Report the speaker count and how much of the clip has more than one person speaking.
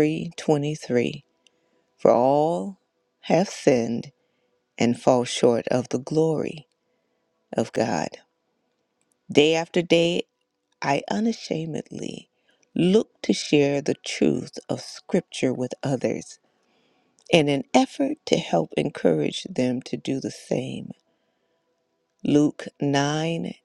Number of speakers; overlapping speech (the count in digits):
1, no overlap